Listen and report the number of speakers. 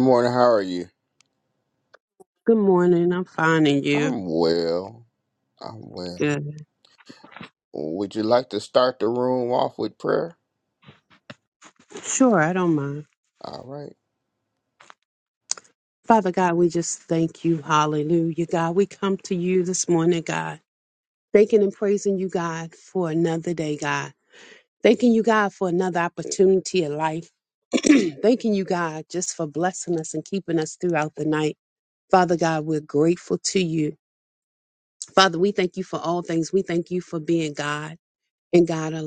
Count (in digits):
2